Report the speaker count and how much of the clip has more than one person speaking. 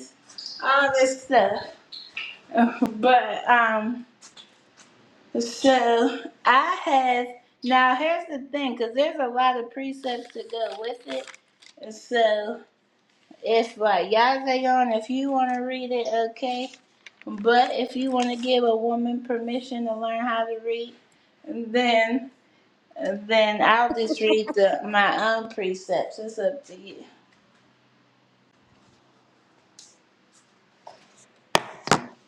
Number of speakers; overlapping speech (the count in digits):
1, no overlap